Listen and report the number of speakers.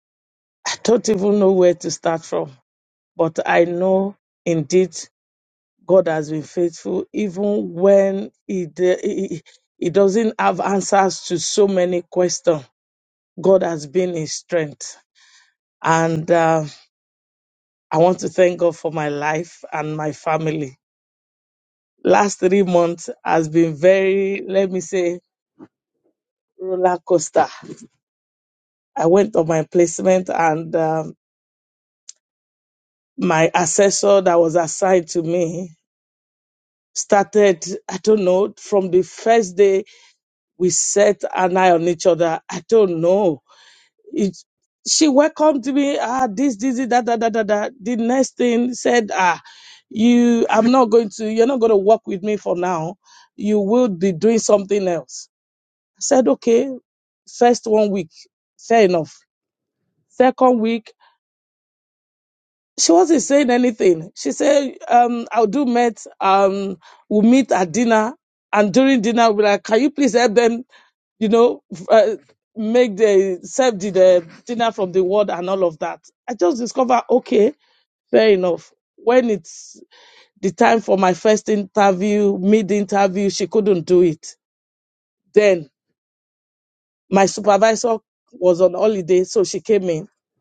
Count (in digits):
1